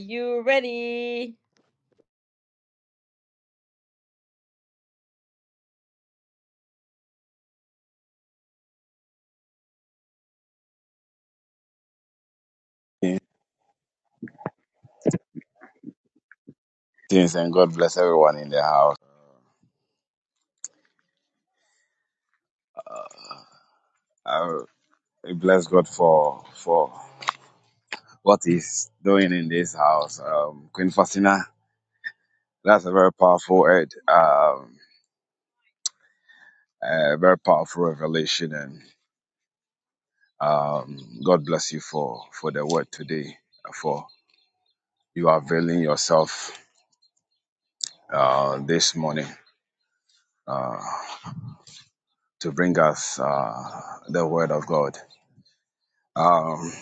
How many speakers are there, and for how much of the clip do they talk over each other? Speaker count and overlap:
two, no overlap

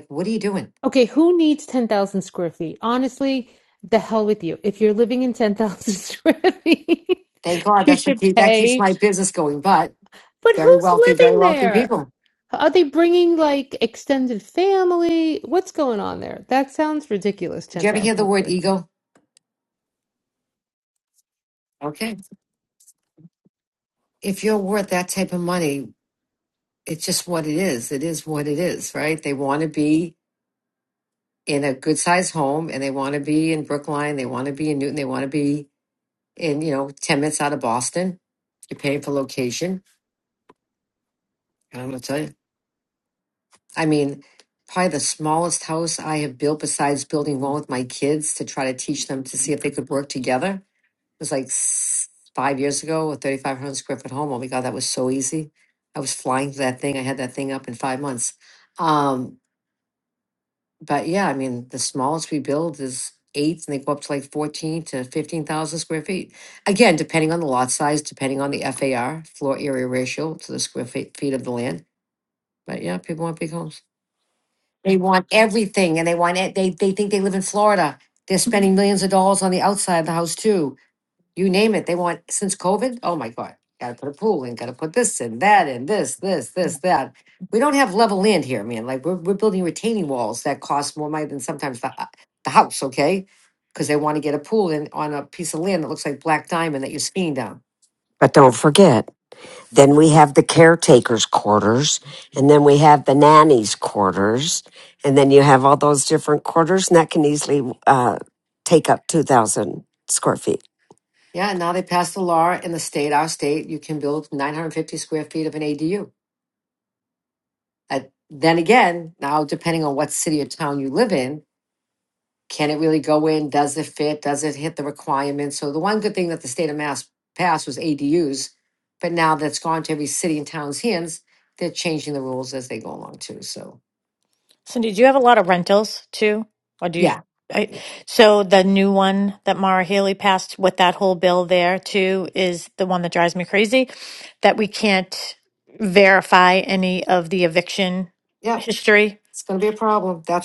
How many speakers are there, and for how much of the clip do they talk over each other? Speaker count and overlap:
four, about 2%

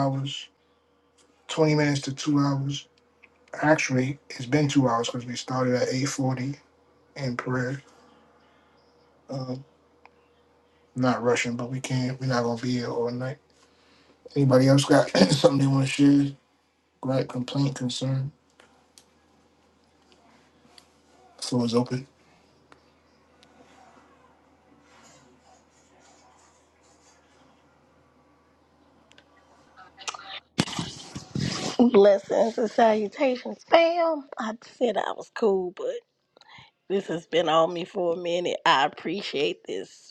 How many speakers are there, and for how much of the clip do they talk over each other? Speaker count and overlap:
two, no overlap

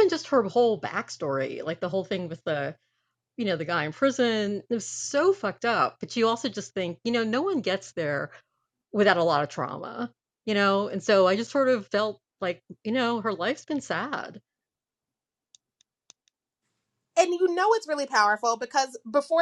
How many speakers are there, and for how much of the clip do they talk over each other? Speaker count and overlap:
two, no overlap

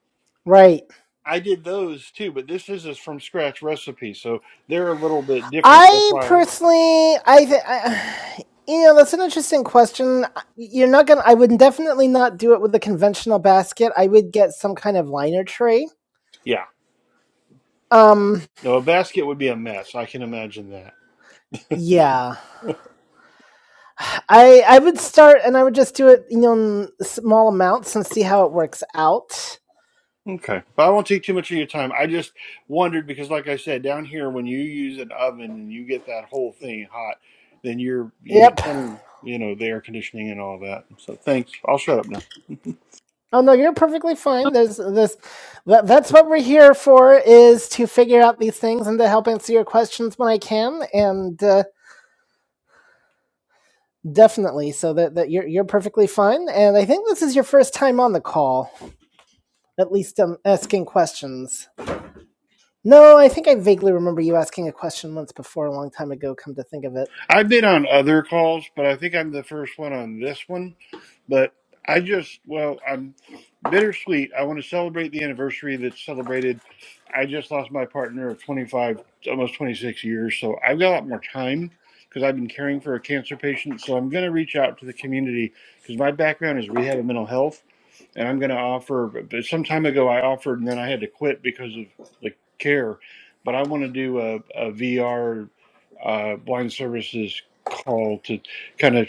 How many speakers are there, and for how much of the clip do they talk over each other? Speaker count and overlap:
two, about 1%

